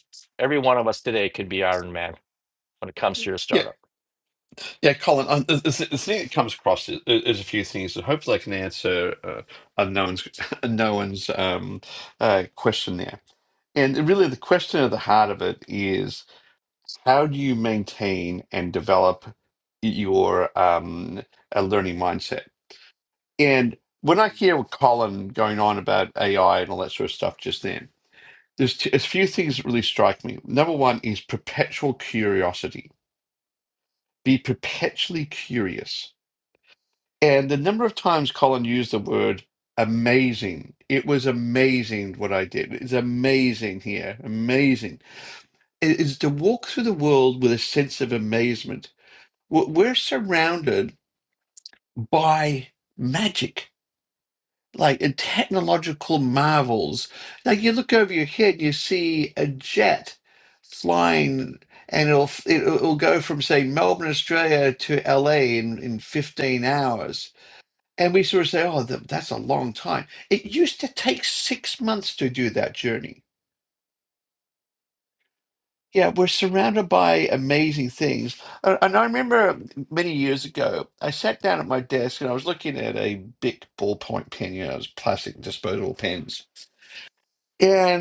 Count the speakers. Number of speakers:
two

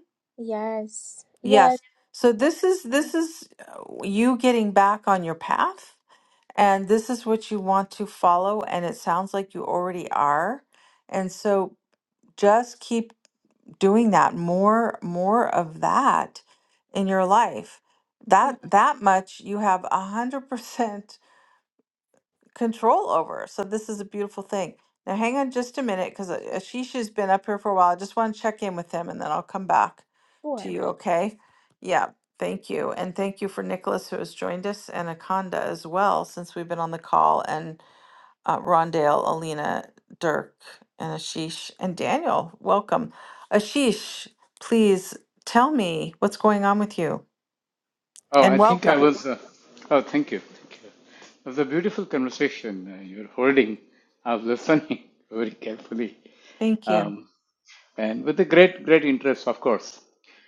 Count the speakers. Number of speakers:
three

